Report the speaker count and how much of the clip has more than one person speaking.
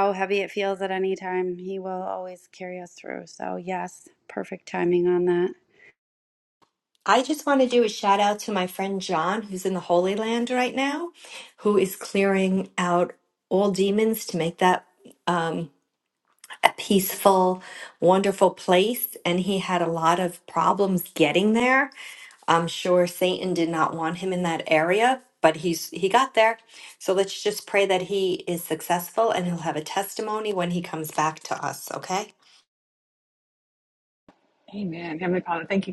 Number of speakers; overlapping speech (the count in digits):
3, no overlap